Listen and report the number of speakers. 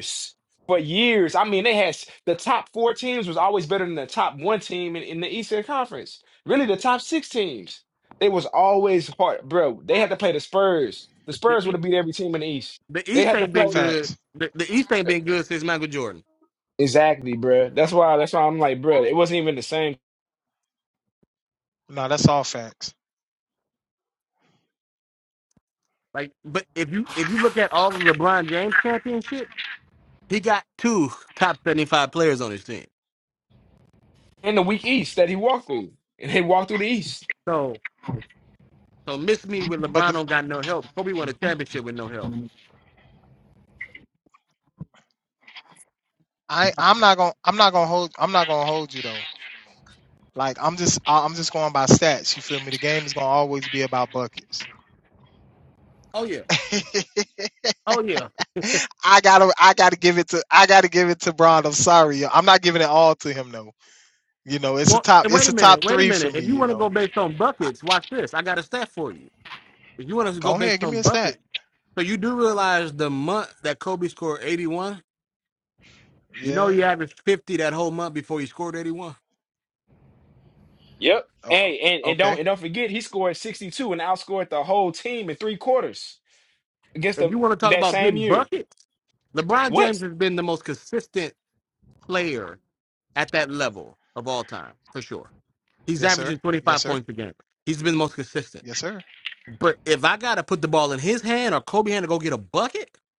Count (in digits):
3